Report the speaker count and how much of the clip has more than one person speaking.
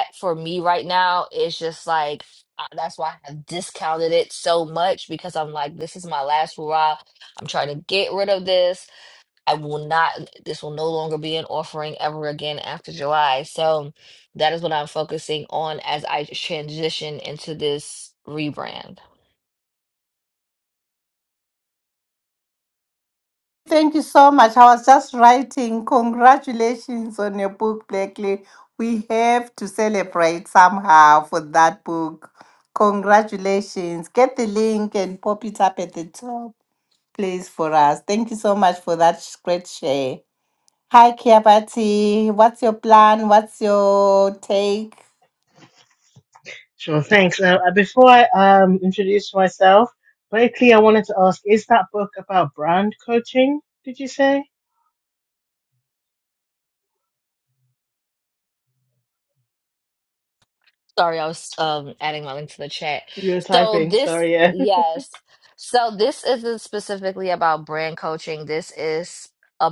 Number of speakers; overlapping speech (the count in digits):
3, about 1%